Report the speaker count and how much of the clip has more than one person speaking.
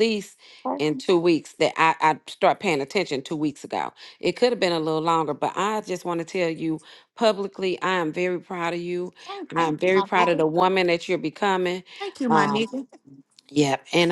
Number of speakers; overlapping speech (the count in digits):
2, about 9%